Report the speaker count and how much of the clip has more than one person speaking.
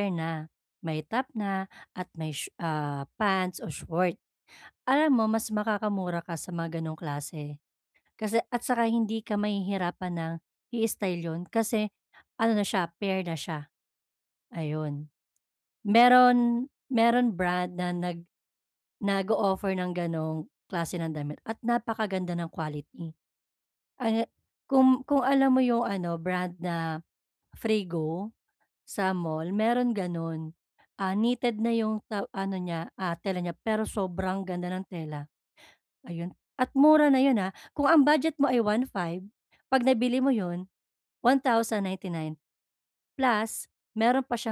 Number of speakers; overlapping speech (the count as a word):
one, no overlap